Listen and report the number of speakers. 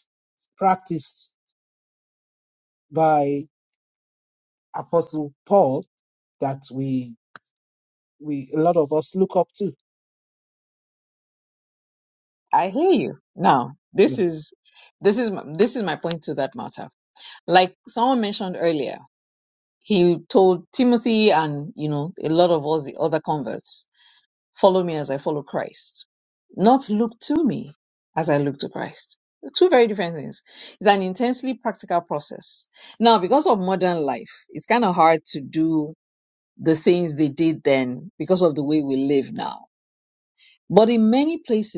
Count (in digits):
2